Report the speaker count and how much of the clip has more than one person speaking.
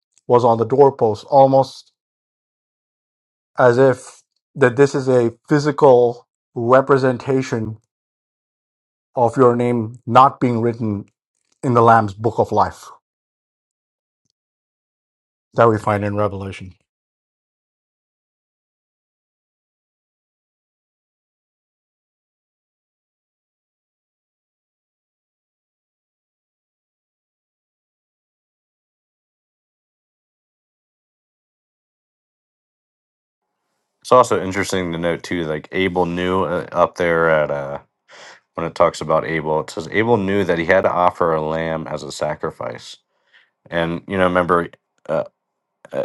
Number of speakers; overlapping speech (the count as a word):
two, no overlap